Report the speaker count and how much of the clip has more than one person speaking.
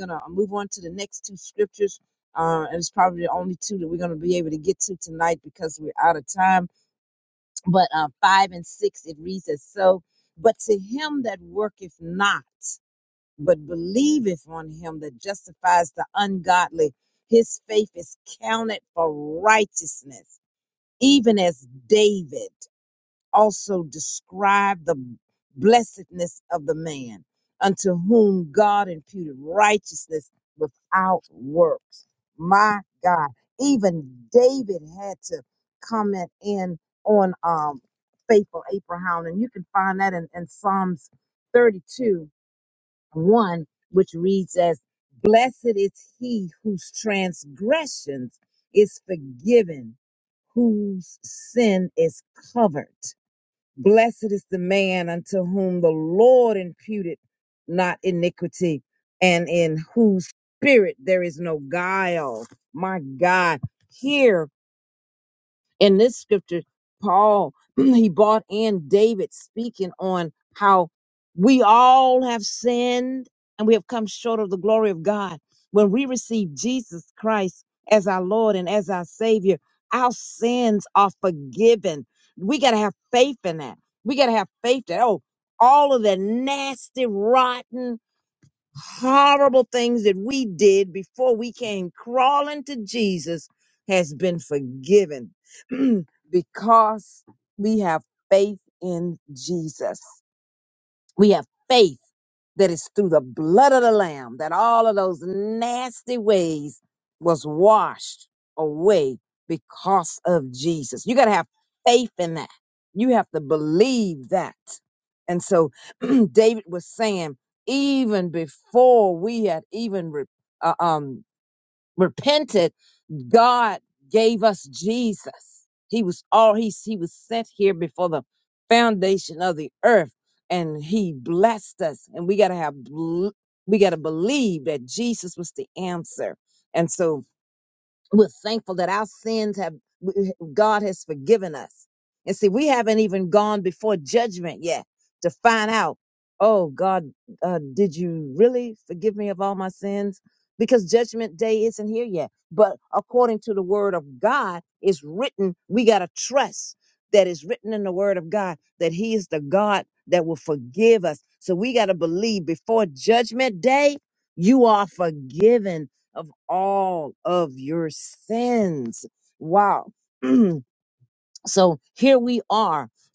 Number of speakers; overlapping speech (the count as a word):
one, no overlap